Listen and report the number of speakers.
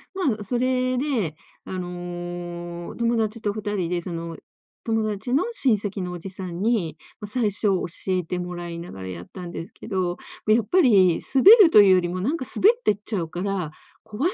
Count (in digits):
1